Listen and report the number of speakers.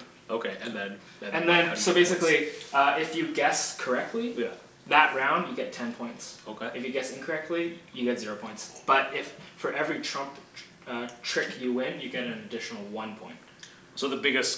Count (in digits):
2